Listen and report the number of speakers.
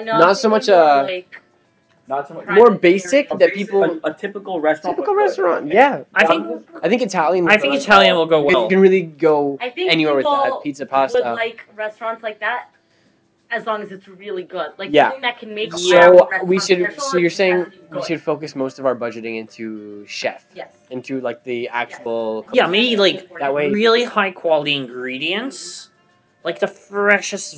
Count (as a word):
four